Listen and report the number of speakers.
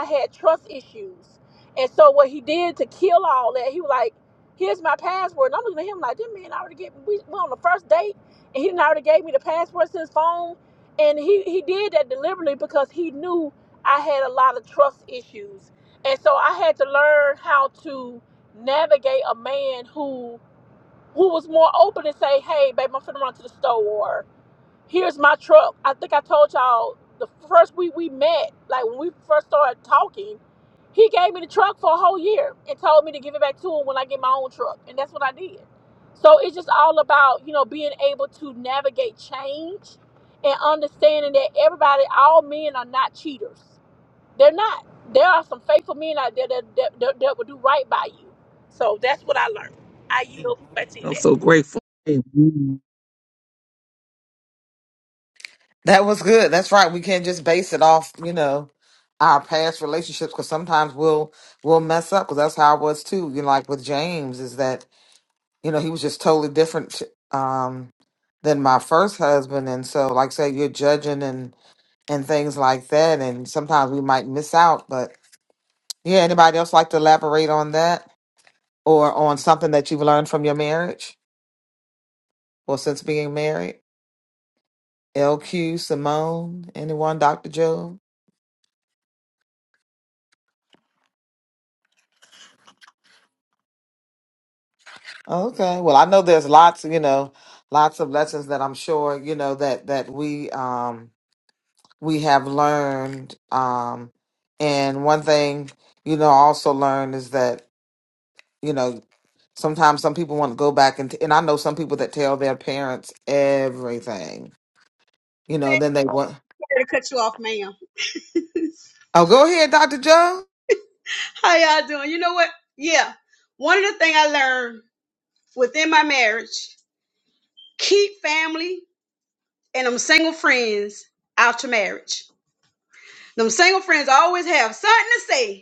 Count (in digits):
4